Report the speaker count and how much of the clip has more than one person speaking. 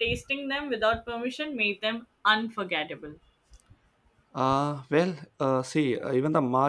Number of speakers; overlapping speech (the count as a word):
two, no overlap